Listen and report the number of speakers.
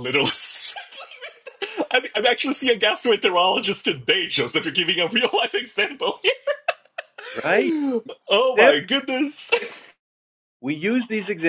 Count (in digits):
2